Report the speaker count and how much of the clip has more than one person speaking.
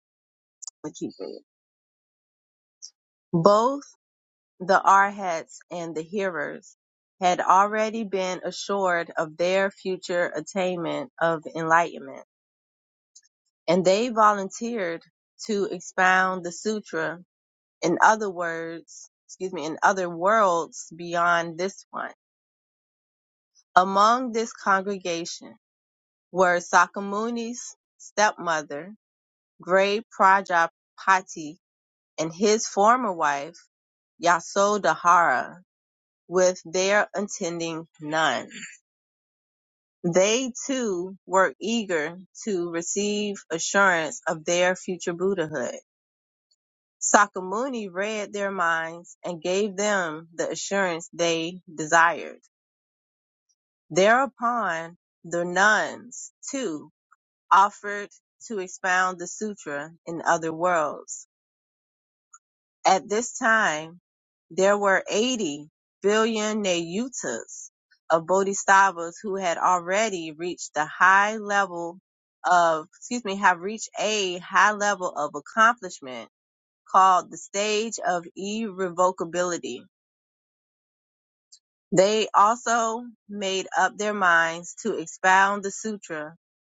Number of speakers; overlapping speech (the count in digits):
1, no overlap